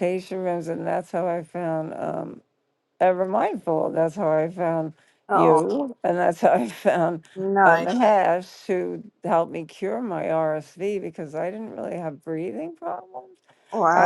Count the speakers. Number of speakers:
2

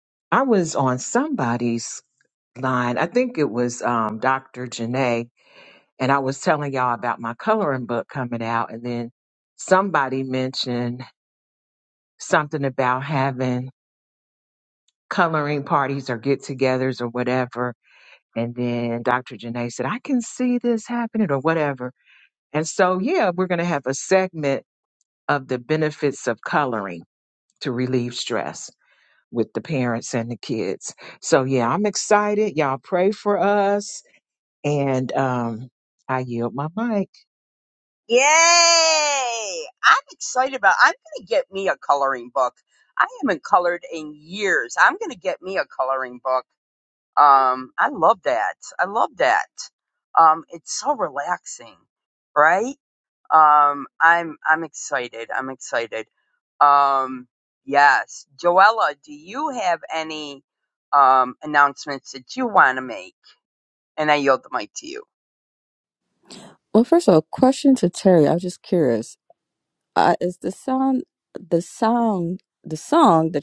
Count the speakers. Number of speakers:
3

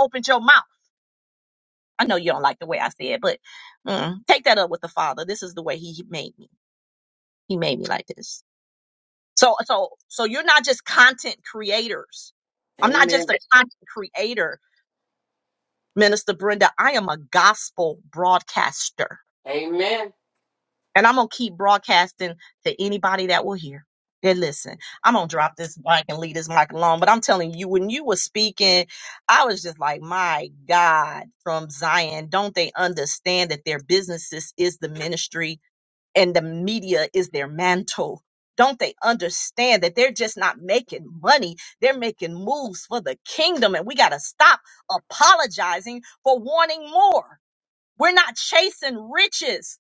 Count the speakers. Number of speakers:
2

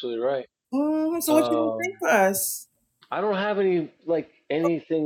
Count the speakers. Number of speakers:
2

